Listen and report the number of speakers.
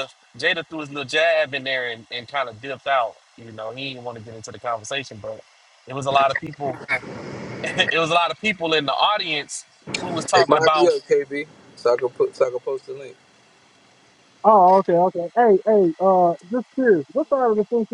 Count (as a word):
three